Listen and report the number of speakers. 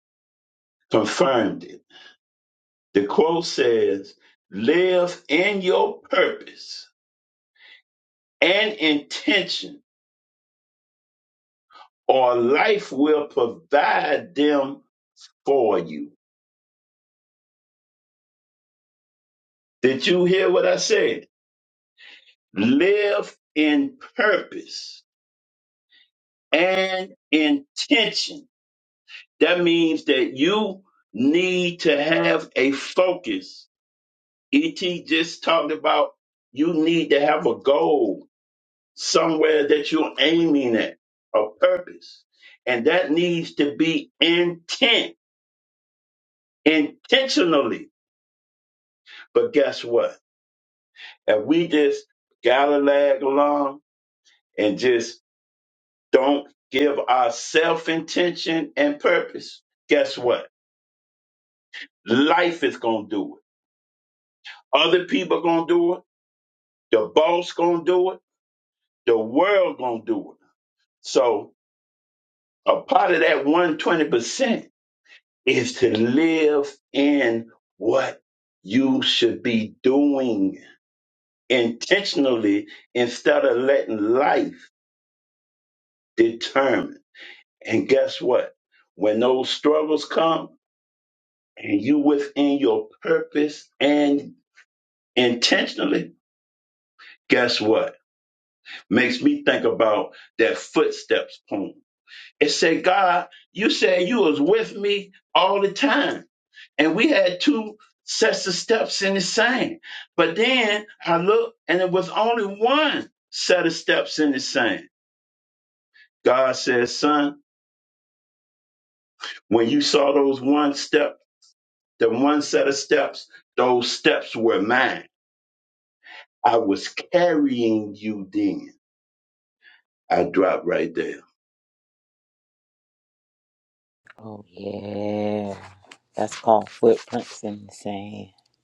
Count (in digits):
2